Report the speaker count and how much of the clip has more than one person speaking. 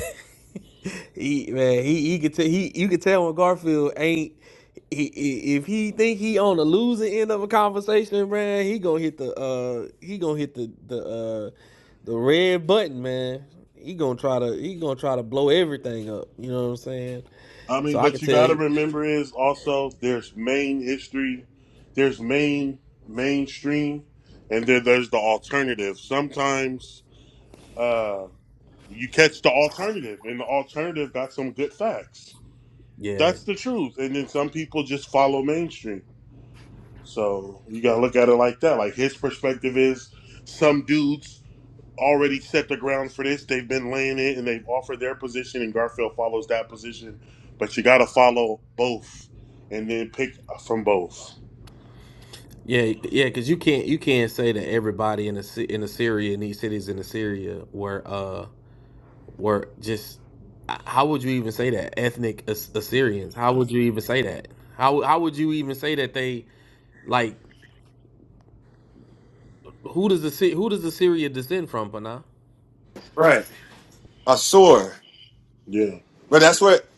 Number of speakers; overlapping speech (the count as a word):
three, about 1%